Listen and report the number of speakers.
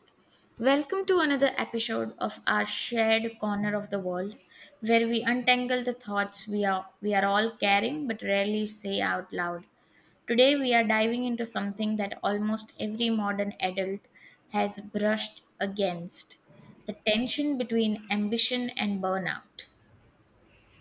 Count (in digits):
1